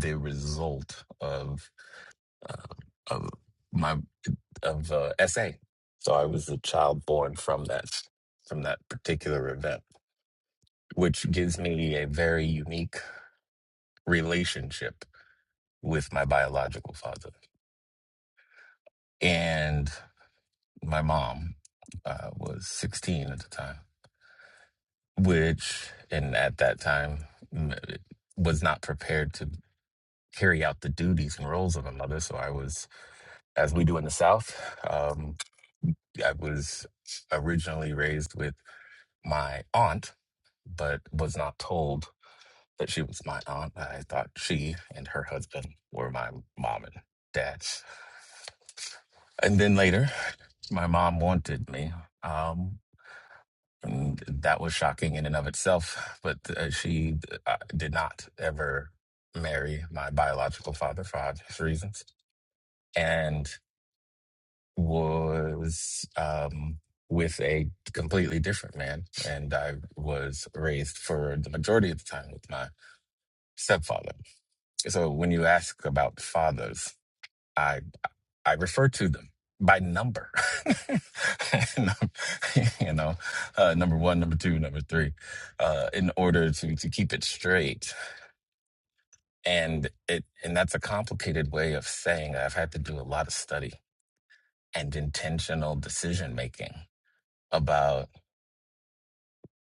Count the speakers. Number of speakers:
one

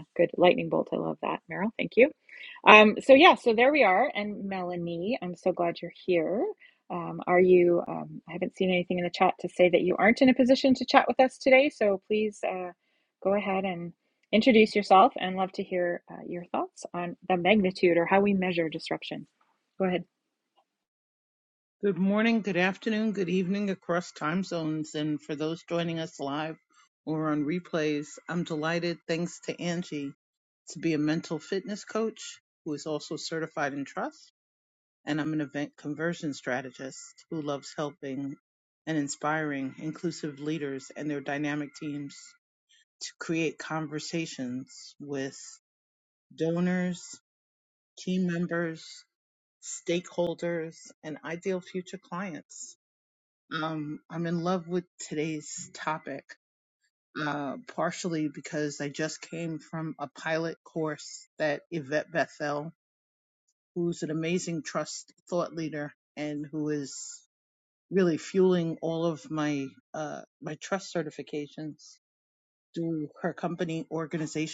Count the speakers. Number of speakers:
two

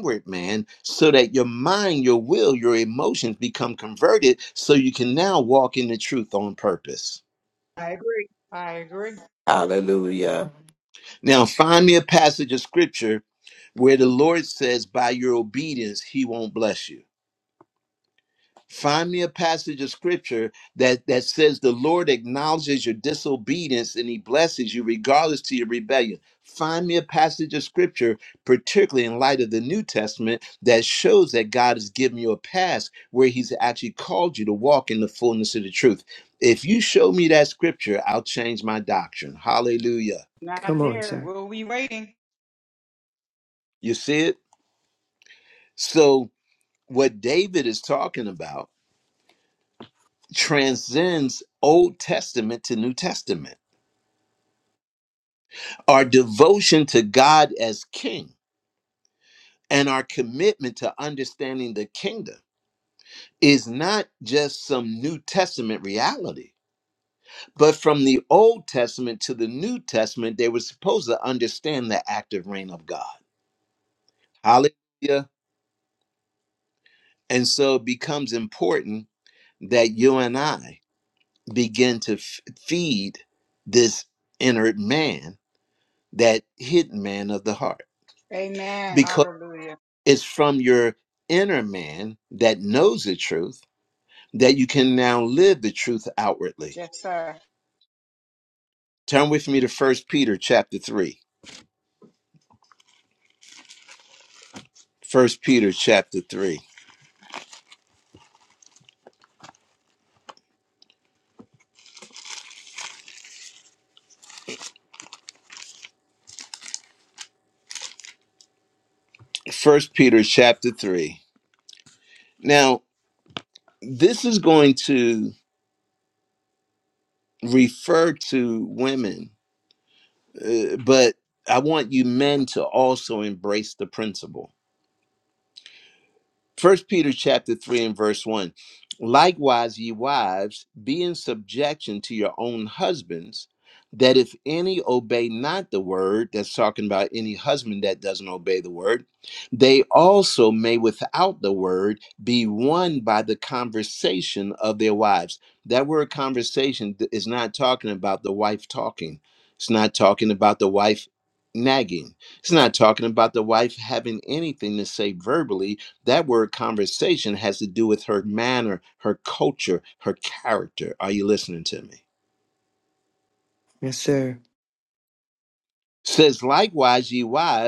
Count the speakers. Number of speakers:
four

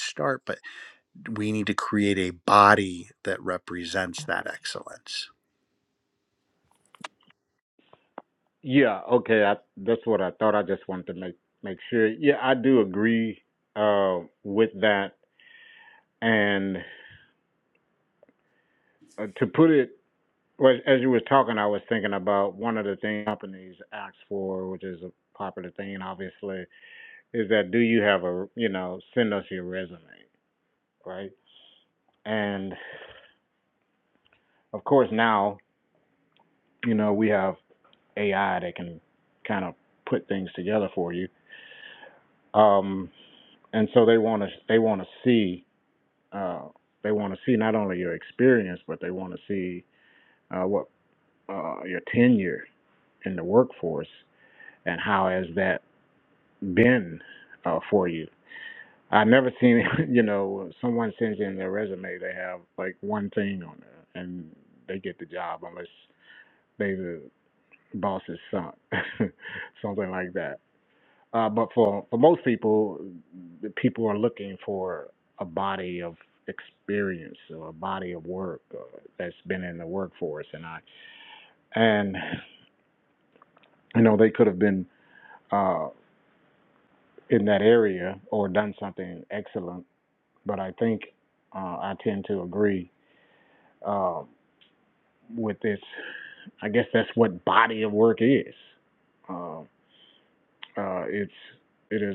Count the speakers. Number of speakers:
two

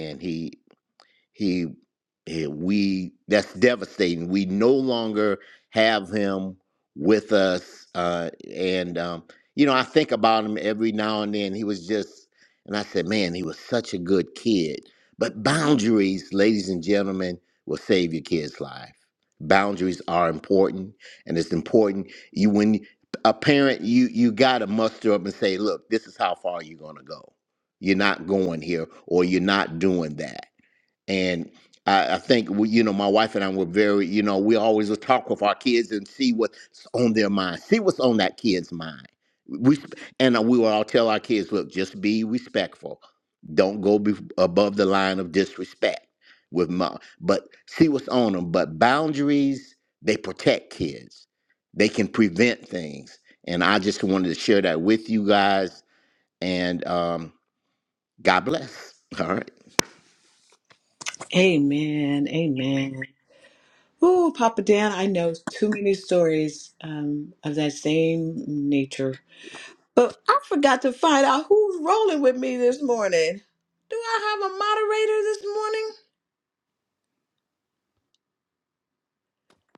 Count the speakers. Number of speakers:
two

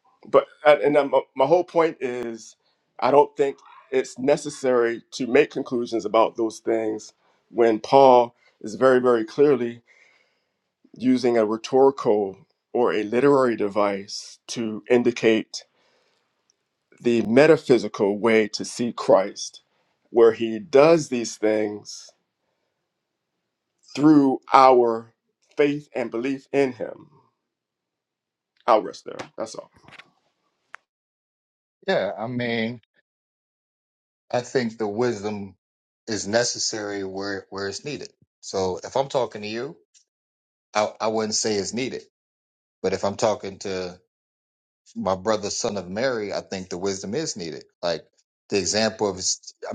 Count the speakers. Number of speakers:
two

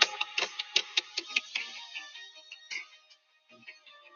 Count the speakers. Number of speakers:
zero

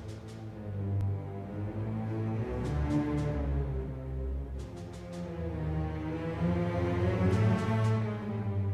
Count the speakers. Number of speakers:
zero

